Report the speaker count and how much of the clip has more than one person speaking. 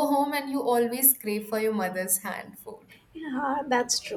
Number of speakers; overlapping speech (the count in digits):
2, no overlap